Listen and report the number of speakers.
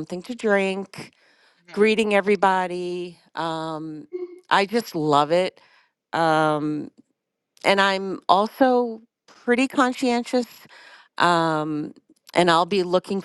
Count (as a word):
one